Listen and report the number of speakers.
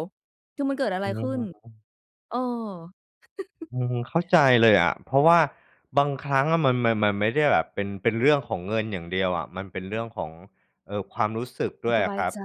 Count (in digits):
2